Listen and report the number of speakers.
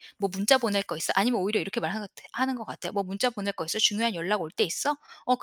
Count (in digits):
1